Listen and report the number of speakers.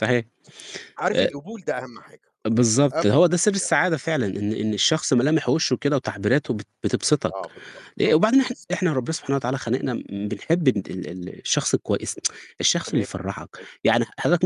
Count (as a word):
two